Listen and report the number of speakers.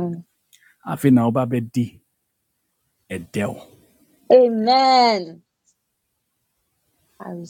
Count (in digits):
2